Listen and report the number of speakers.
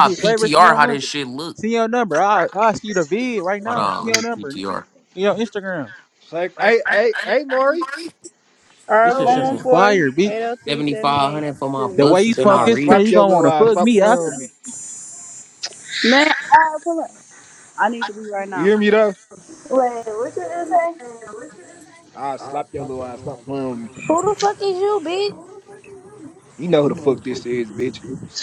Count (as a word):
five